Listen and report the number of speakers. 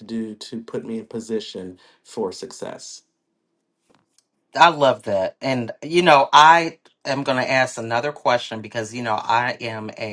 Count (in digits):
2